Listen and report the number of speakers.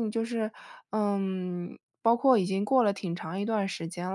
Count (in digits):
1